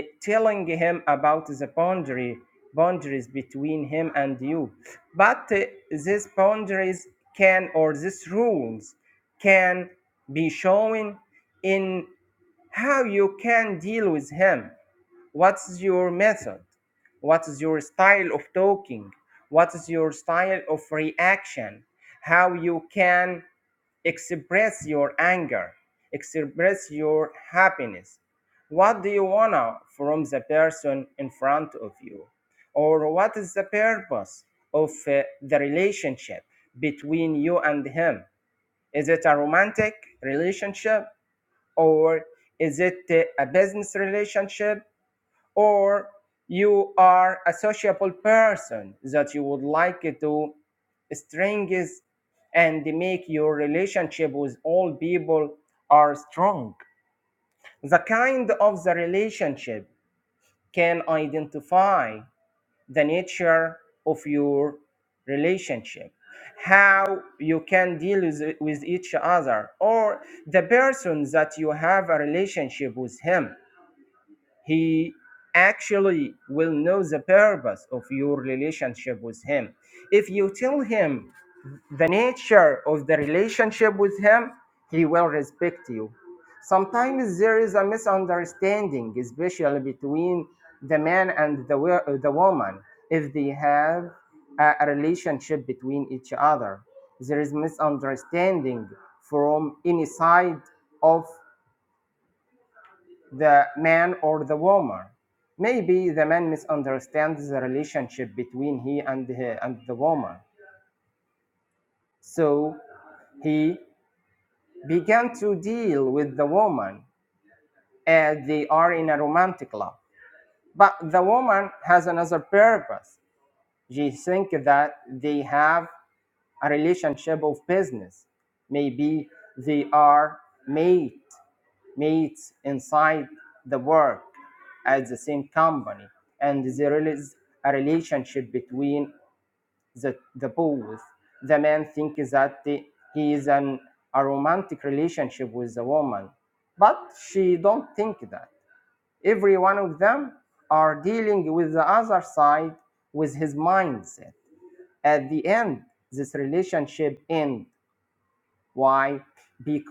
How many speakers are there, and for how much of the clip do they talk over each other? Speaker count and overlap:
one, no overlap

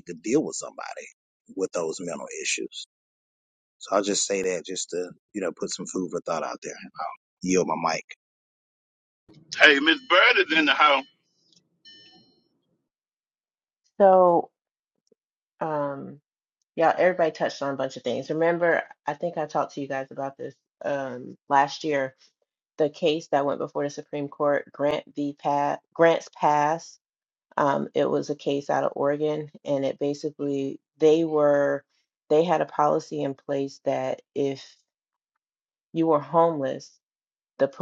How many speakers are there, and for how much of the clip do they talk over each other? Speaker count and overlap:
three, no overlap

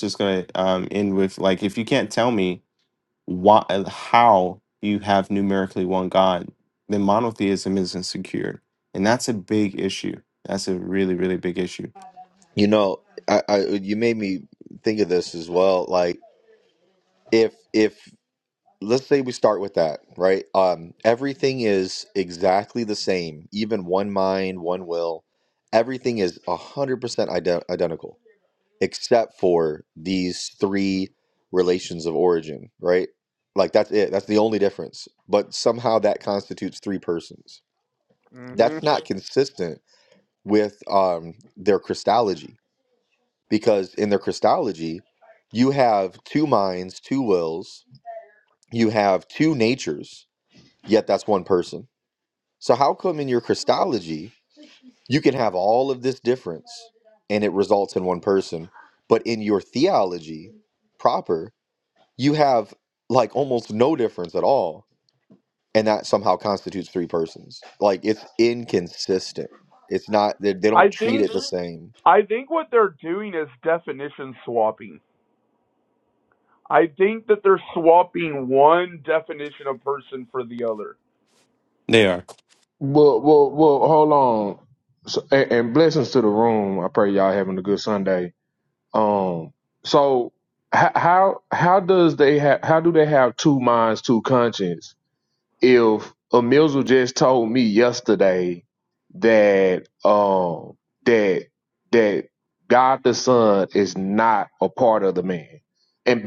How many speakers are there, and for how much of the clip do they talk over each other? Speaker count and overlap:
four, about 1%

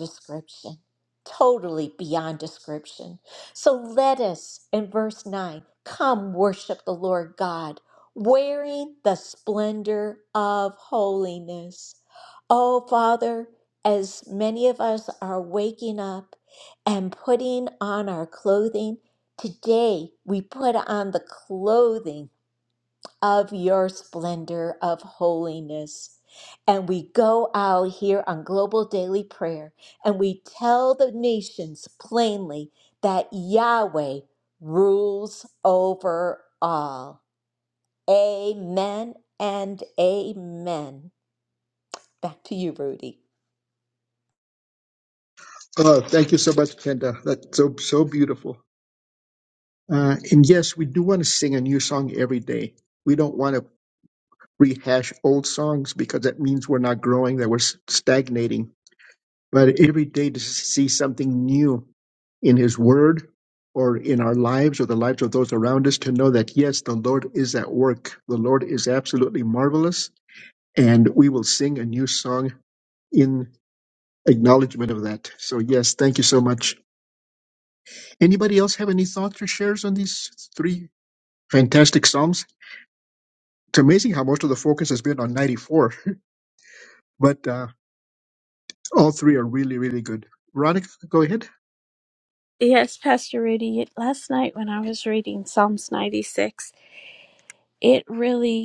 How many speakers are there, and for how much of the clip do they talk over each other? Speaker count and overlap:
three, no overlap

